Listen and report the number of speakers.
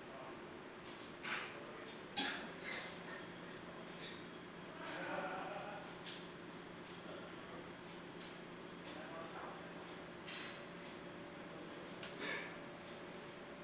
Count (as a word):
zero